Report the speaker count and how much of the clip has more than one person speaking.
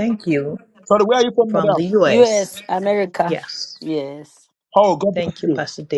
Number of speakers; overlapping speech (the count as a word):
three, about 24%